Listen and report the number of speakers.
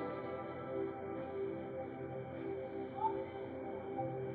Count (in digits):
0